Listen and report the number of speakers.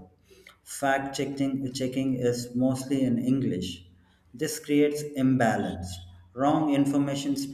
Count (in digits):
1